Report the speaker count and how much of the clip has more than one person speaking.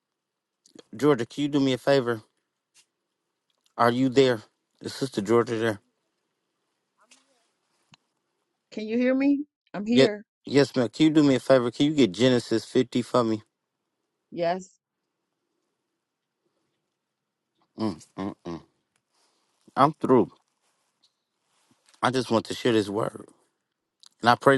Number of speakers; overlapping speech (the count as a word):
two, about 1%